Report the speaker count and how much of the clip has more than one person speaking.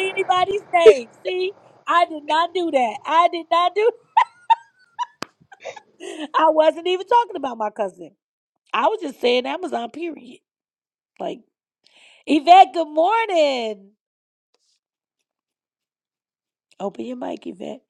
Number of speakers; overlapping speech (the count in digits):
1, no overlap